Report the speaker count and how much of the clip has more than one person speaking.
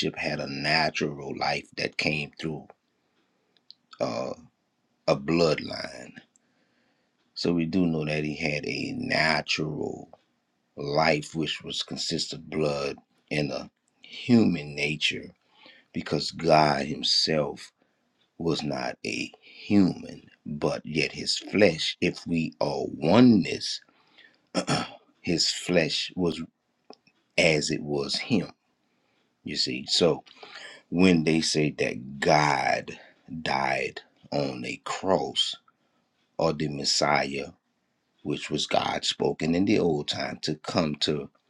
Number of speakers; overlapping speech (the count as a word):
one, no overlap